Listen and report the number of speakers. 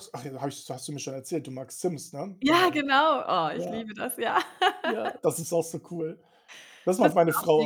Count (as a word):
two